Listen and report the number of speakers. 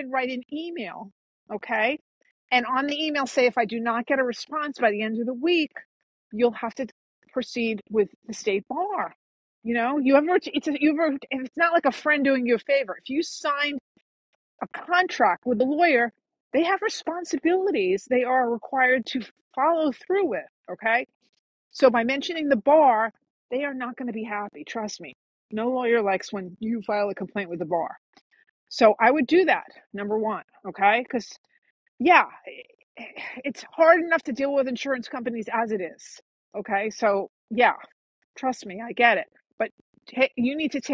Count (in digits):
1